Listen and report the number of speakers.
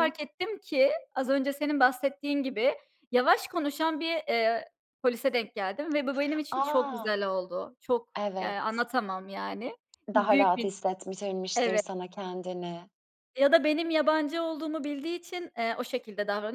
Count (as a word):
two